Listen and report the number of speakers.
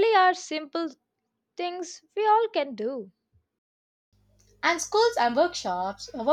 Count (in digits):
2